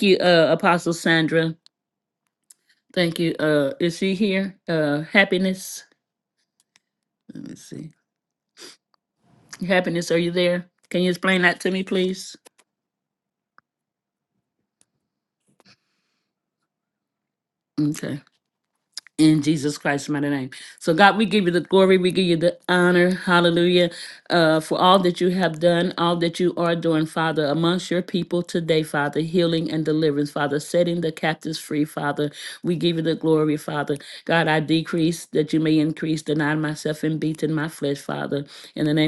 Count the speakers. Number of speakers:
1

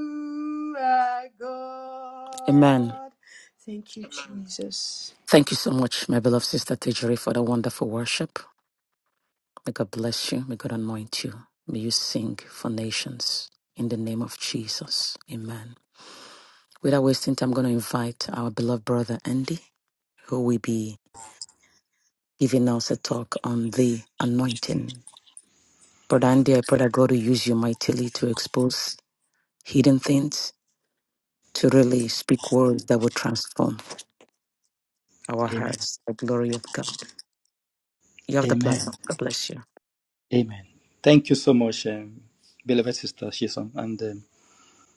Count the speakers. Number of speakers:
3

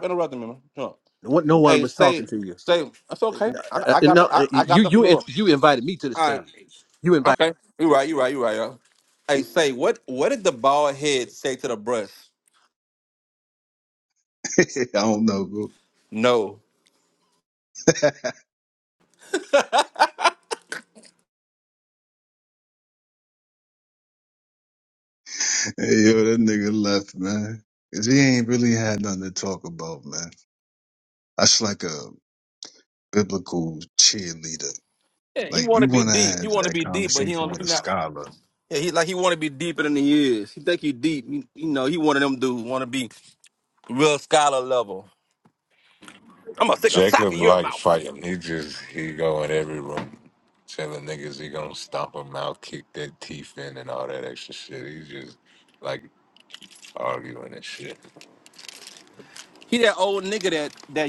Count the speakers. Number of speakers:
4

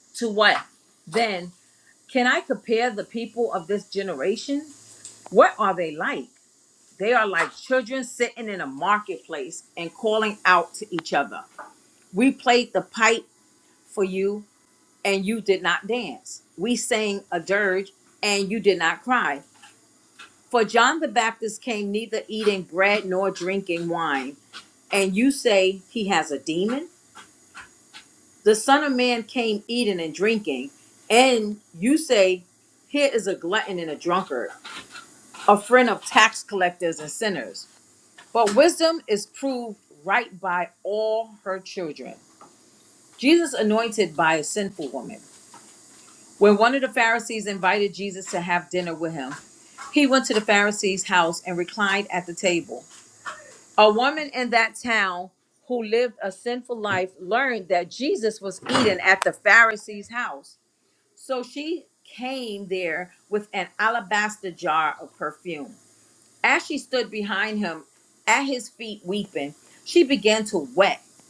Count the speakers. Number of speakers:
1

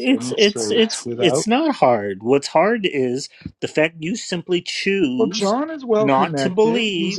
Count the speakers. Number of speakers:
2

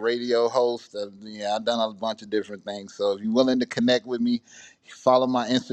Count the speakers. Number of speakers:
1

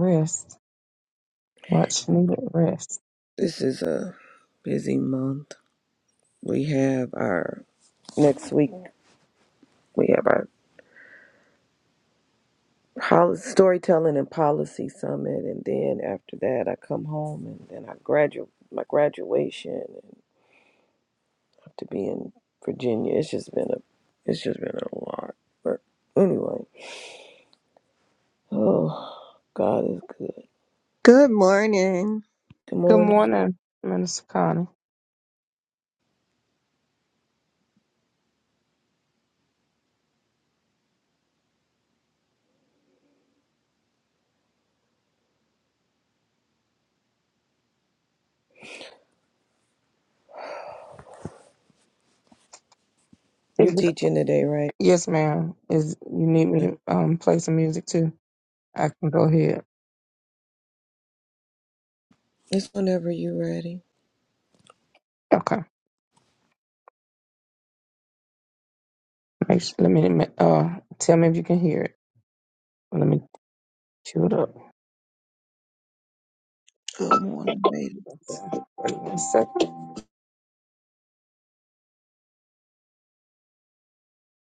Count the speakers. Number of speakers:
4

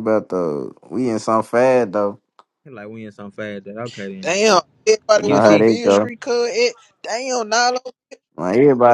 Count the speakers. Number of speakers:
3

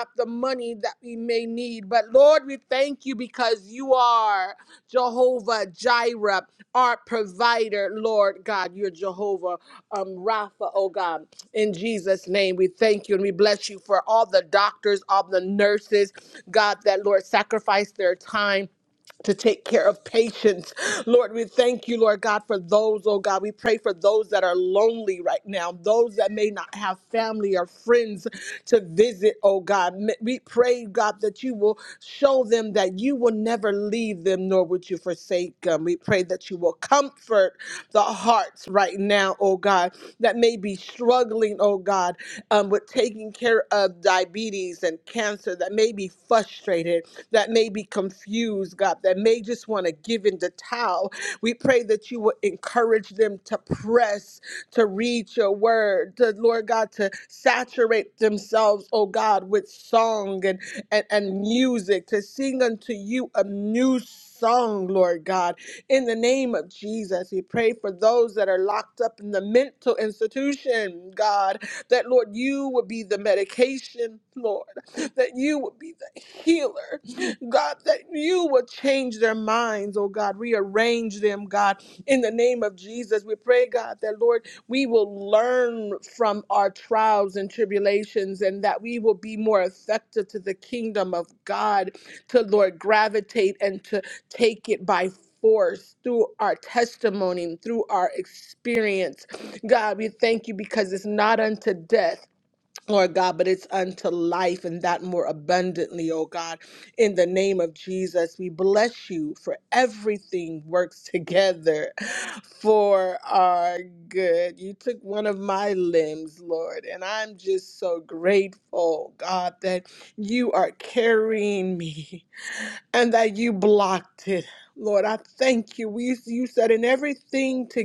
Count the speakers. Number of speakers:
1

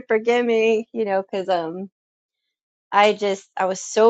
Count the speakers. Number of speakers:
1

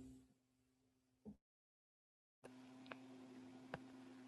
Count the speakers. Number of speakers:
0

